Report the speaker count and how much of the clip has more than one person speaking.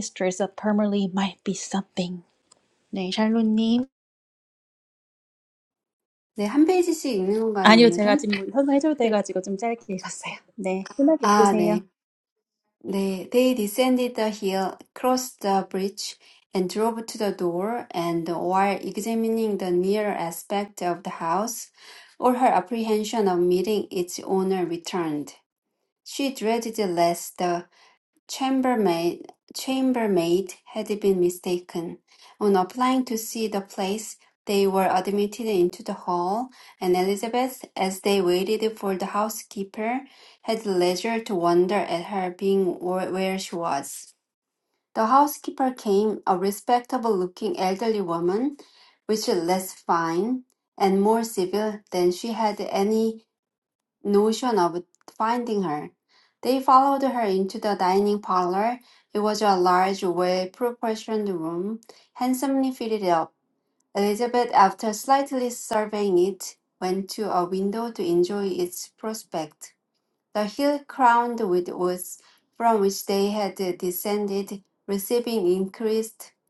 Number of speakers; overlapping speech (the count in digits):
2, about 2%